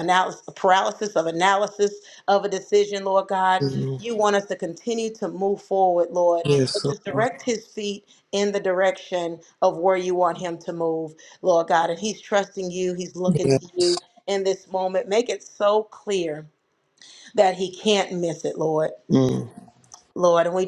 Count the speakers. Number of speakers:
two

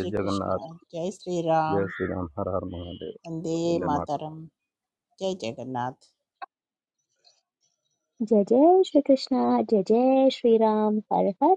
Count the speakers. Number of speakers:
three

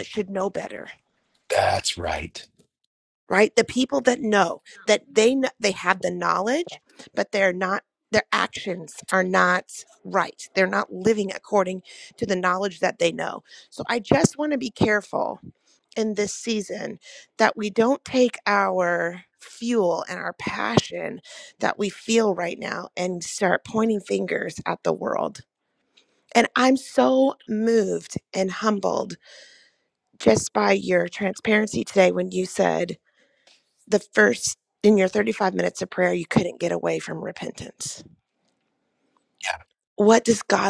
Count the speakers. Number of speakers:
two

